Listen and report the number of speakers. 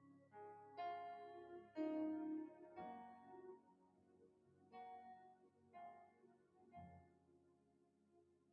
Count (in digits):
0